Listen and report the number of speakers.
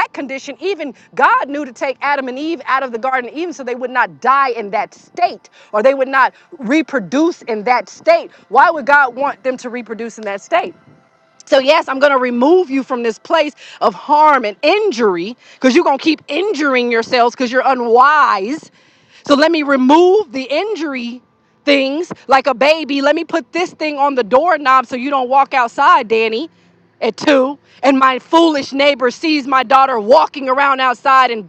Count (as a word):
one